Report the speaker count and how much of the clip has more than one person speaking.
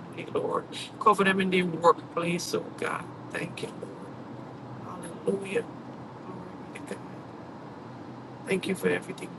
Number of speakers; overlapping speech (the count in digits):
1, no overlap